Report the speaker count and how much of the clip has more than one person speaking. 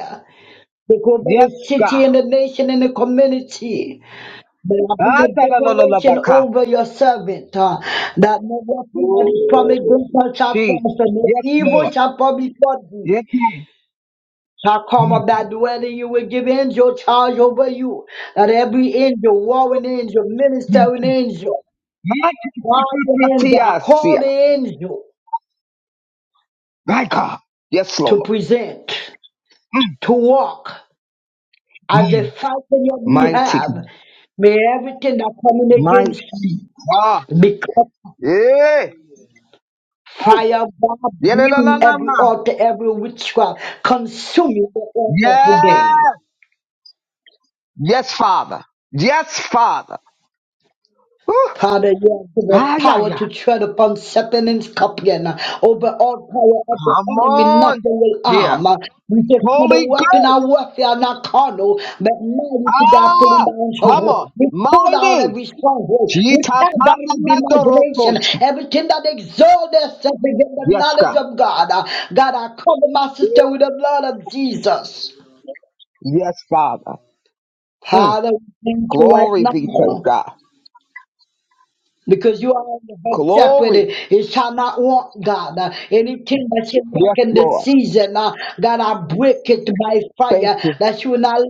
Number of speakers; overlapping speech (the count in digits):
2, about 20%